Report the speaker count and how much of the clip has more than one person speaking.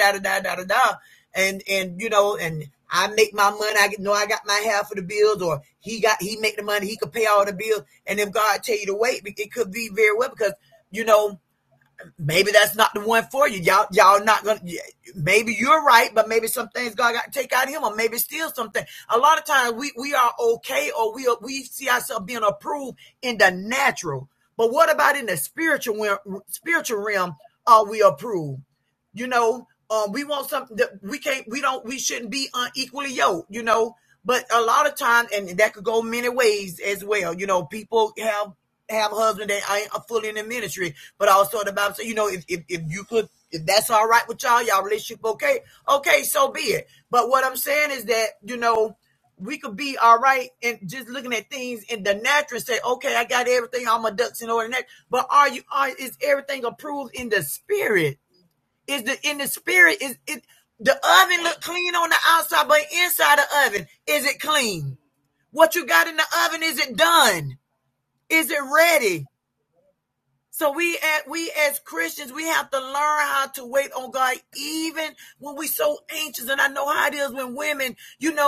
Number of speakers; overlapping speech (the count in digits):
1, no overlap